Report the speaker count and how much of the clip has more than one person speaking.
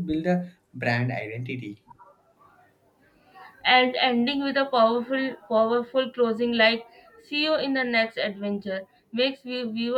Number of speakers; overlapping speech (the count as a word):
two, no overlap